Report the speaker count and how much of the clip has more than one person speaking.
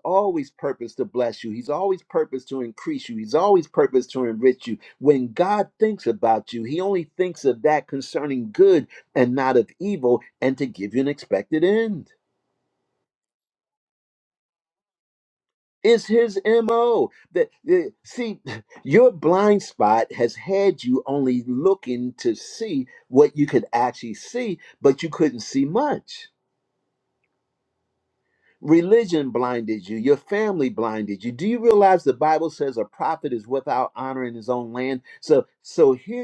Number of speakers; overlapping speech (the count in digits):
1, no overlap